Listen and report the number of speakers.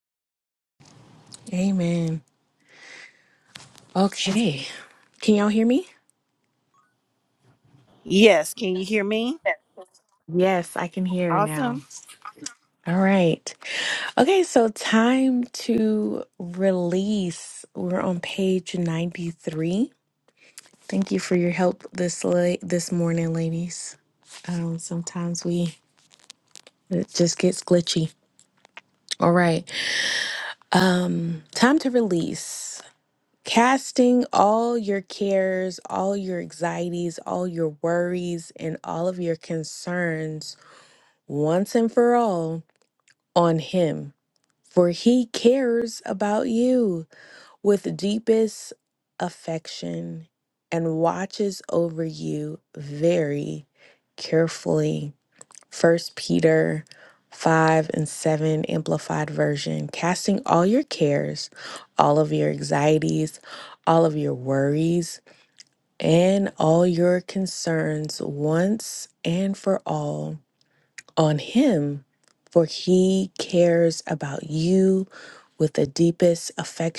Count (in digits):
2